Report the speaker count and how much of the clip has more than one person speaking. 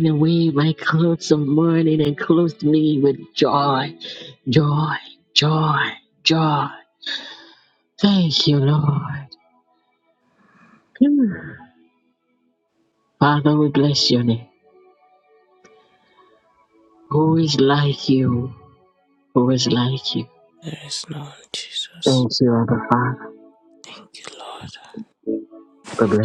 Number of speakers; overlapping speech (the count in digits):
2, about 1%